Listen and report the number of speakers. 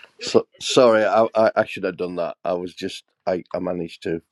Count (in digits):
1